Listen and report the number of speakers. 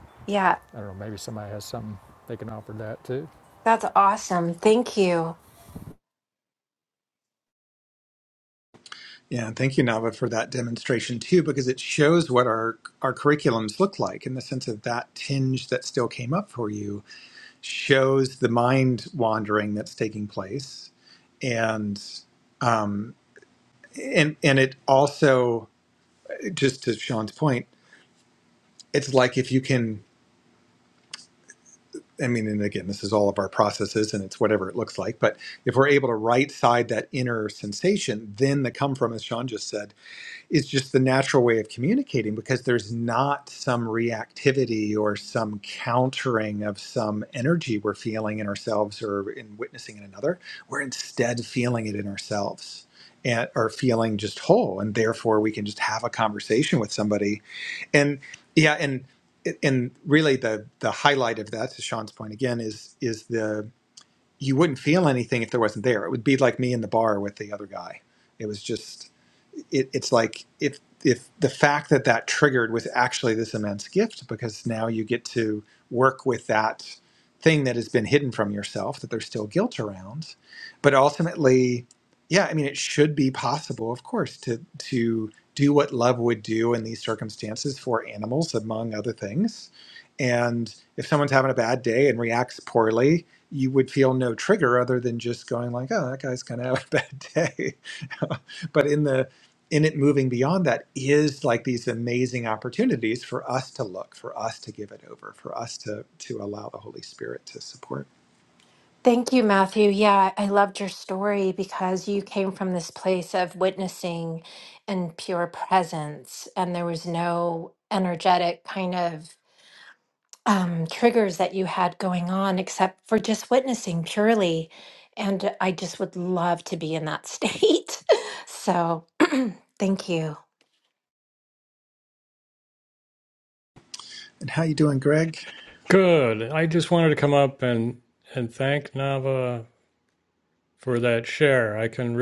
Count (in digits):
4